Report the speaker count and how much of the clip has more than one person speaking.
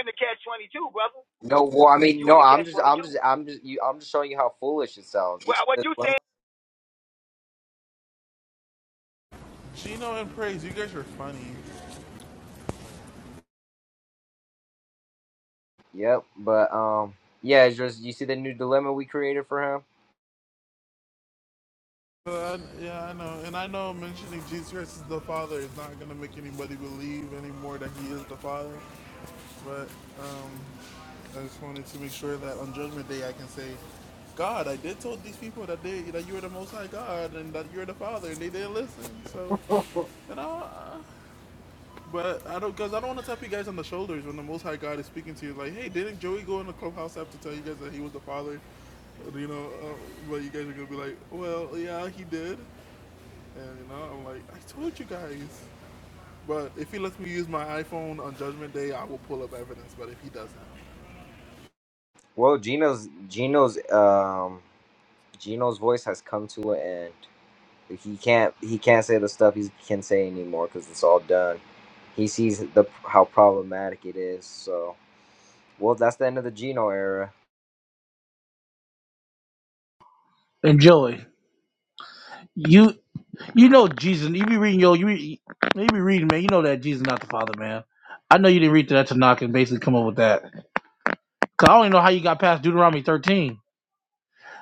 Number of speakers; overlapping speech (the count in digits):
4, about 2%